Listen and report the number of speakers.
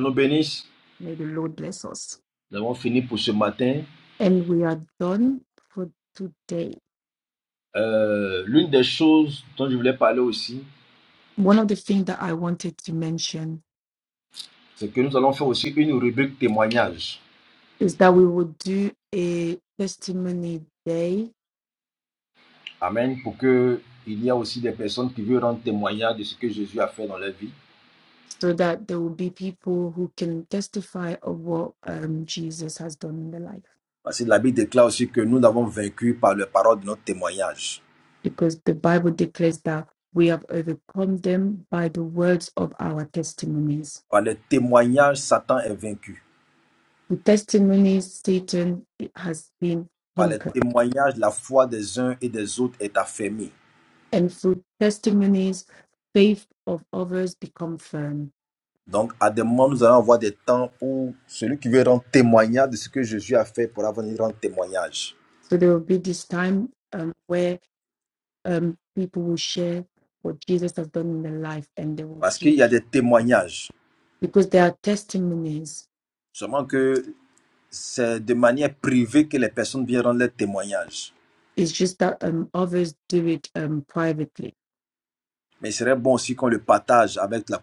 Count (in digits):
2